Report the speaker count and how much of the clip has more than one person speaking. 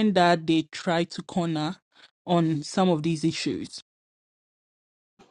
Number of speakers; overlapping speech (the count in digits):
1, no overlap